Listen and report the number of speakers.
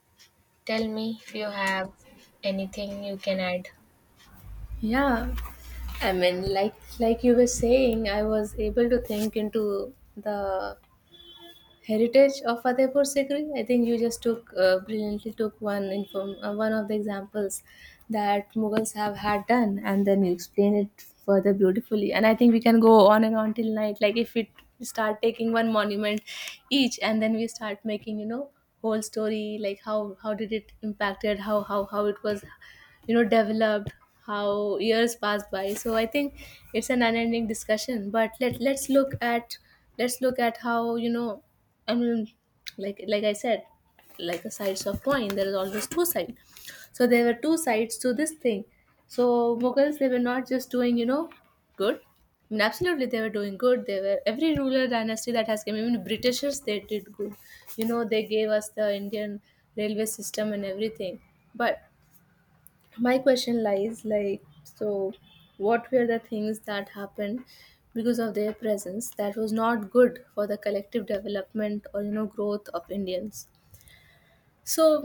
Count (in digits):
2